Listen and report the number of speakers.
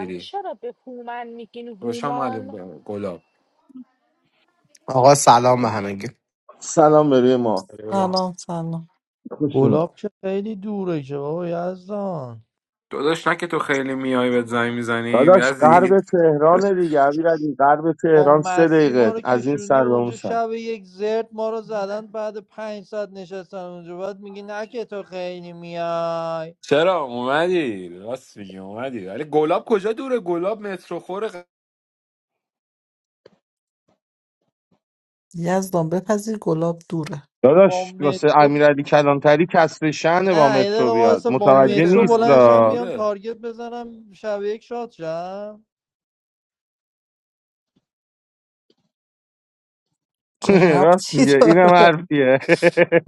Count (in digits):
6